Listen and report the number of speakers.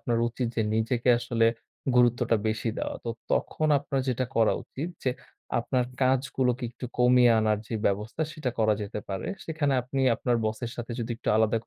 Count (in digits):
1